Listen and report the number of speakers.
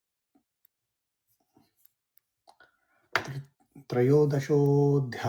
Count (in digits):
1